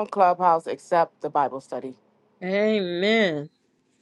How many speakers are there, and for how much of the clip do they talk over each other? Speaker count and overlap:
2, no overlap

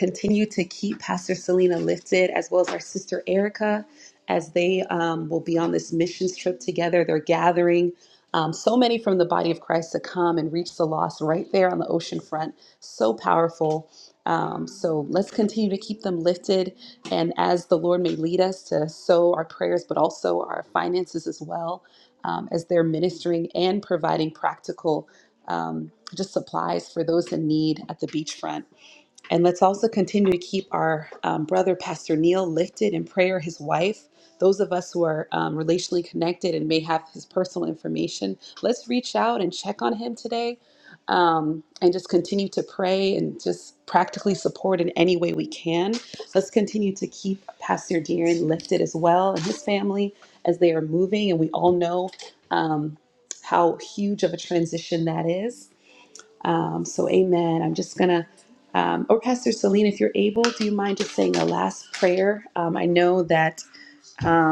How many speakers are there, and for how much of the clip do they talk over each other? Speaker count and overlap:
1, no overlap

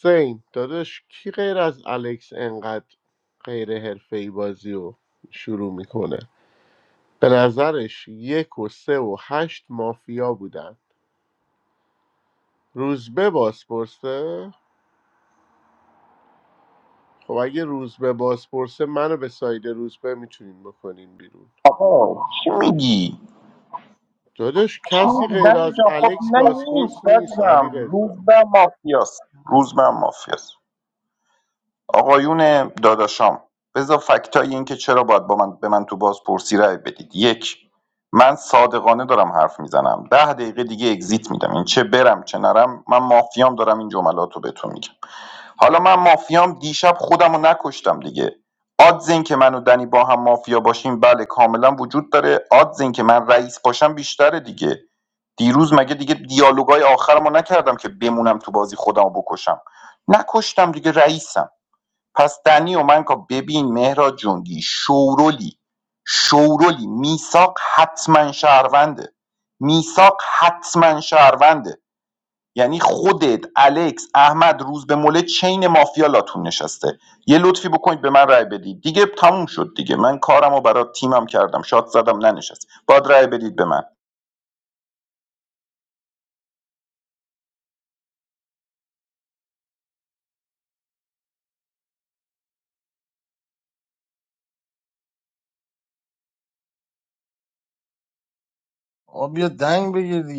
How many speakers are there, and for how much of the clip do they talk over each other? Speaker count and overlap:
3, about 3%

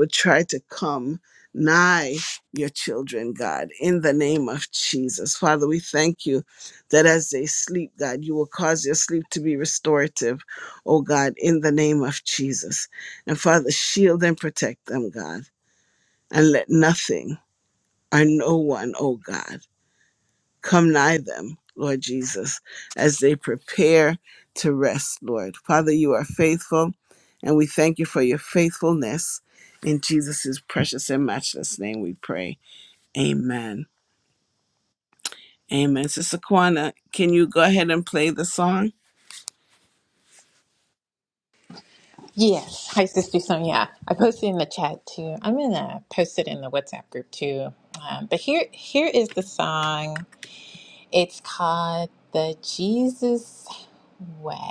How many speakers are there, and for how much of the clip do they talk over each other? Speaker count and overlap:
2, no overlap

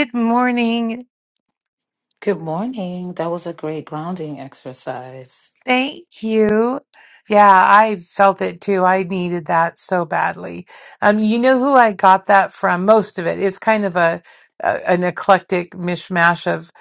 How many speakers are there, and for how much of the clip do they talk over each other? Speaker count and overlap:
2, no overlap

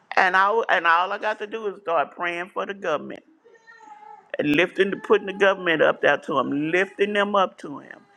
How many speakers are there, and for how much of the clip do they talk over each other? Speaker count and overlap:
1, no overlap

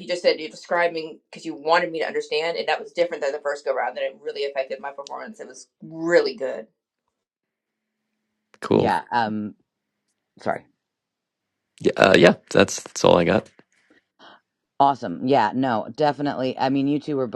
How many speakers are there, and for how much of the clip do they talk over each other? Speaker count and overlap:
3, about 1%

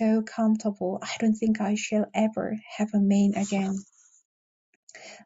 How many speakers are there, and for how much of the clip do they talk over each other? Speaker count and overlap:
1, no overlap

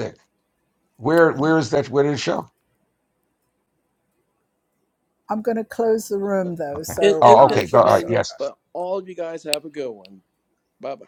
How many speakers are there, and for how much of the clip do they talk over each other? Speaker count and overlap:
3, about 15%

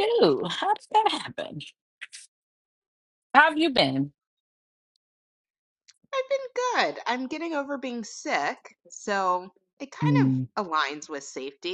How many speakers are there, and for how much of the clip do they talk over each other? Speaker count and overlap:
2, about 4%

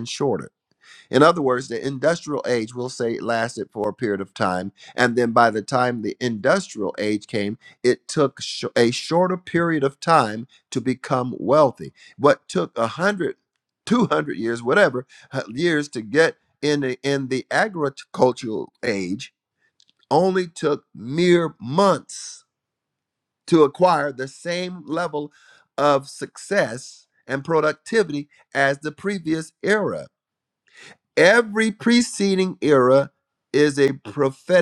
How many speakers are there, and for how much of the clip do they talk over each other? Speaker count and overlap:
1, no overlap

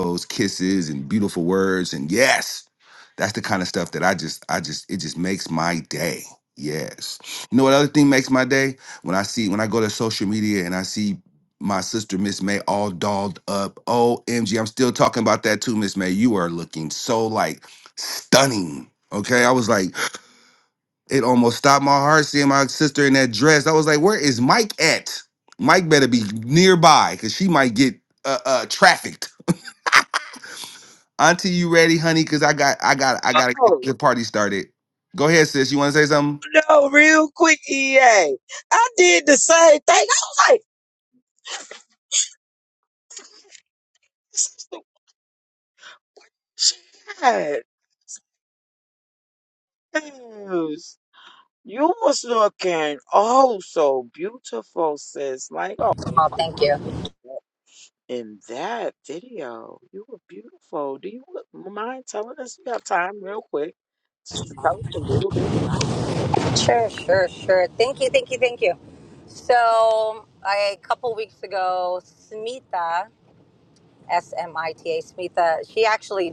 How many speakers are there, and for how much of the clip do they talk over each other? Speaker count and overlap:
3, about 1%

